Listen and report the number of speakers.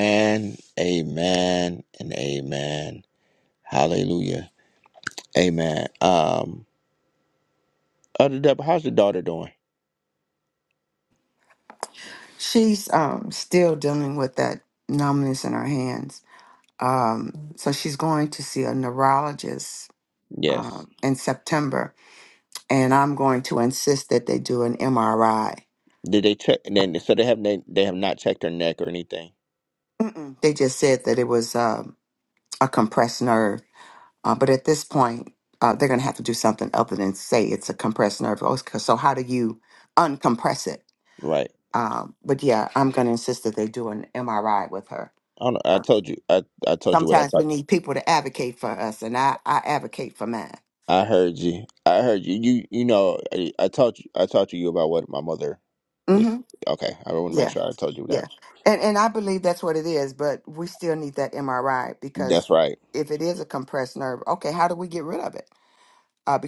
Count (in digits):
2